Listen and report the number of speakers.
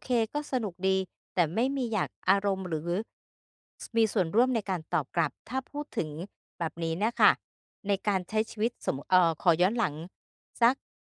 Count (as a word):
one